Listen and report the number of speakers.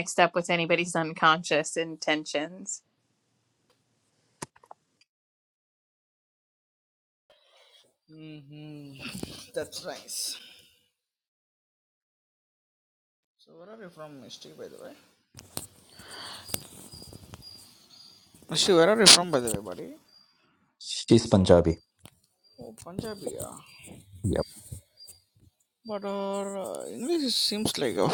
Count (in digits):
3